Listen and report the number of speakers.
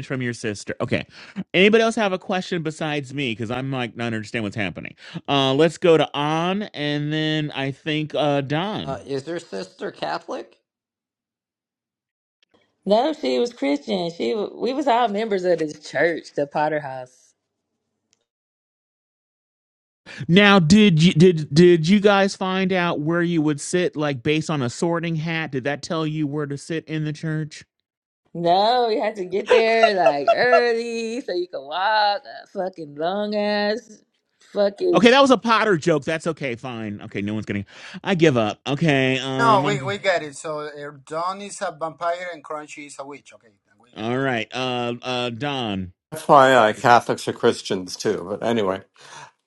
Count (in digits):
5